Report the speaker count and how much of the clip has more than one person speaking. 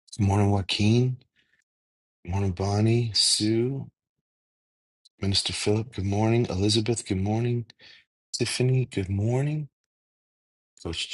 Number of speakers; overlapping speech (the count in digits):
1, no overlap